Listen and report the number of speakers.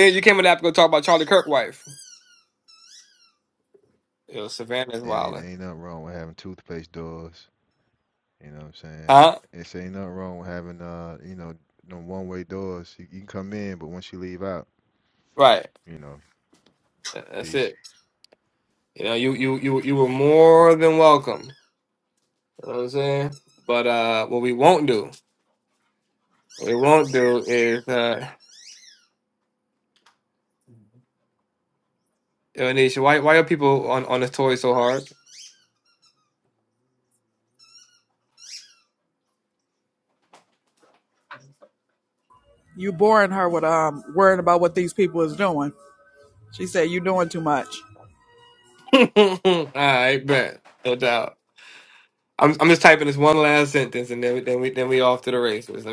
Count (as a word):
three